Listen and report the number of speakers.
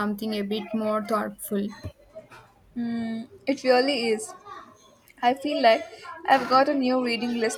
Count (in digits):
2